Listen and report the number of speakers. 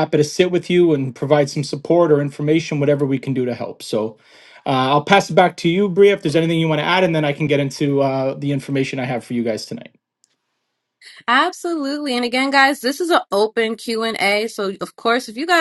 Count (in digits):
2